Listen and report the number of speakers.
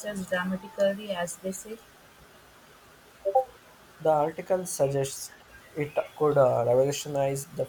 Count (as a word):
two